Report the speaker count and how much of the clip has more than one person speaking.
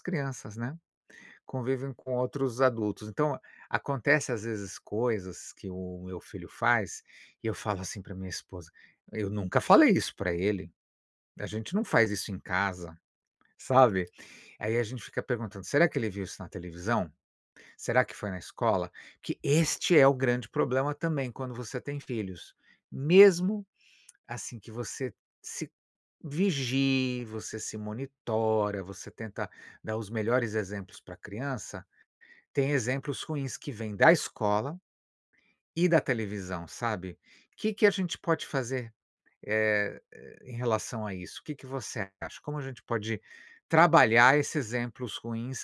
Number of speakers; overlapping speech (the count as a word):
one, no overlap